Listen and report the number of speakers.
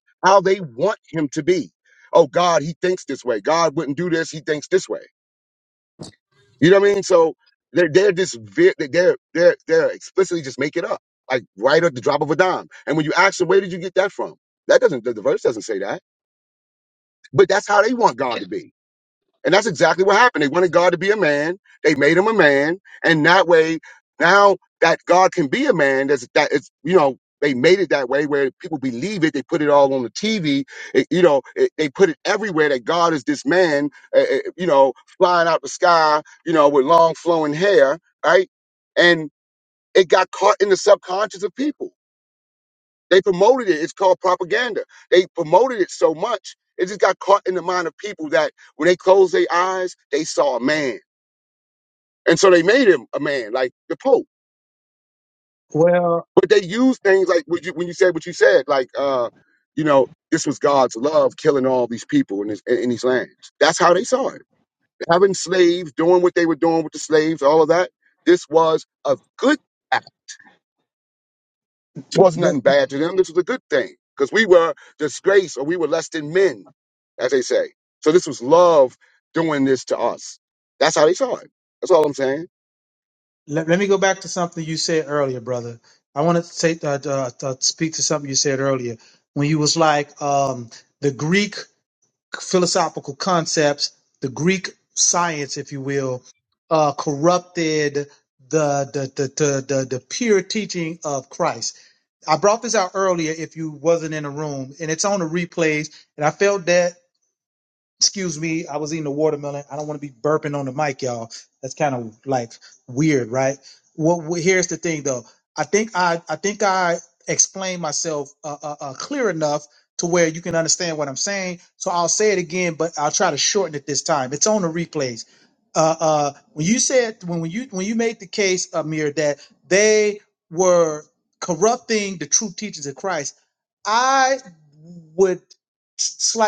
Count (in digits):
2